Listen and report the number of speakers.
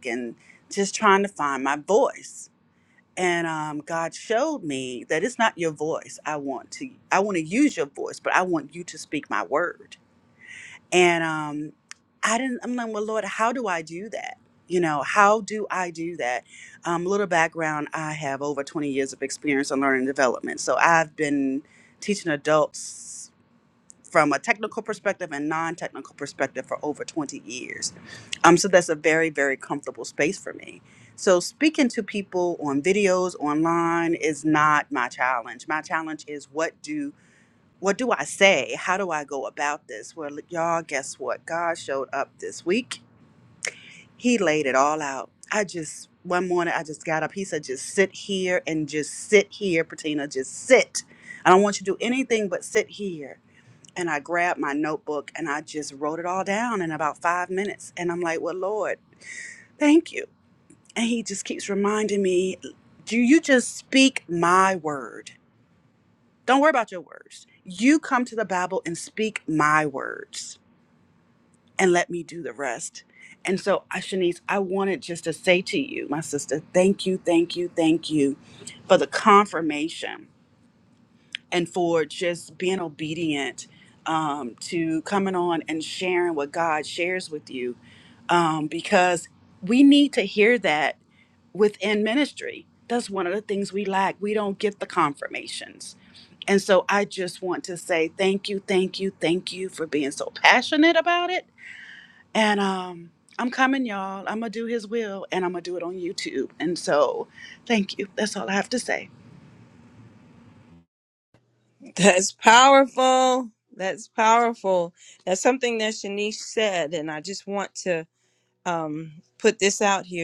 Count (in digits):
2